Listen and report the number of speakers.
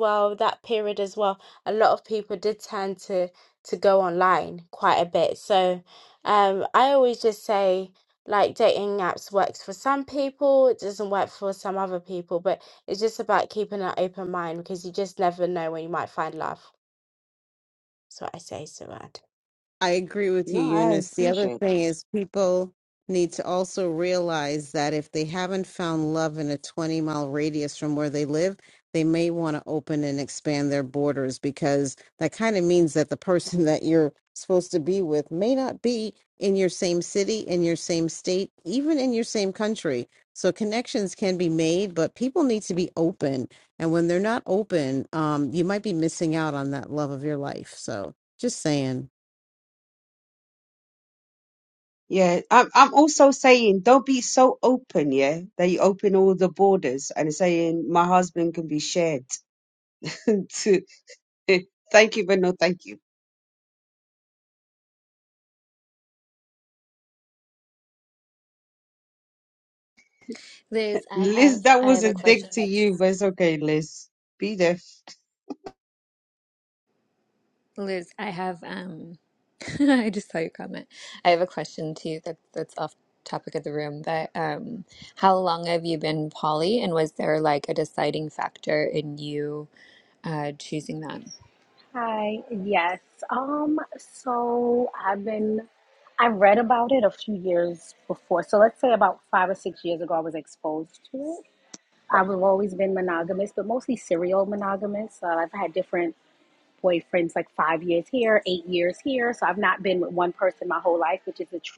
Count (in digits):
5